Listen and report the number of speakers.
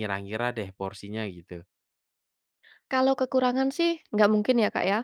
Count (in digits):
2